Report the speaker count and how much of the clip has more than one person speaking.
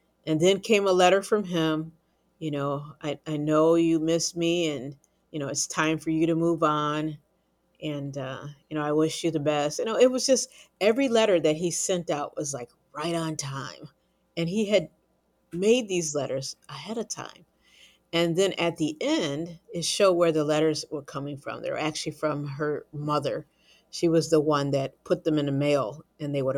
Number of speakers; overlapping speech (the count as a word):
one, no overlap